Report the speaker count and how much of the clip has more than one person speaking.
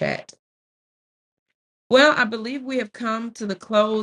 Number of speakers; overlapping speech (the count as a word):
one, no overlap